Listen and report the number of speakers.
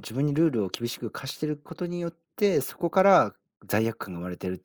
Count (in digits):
1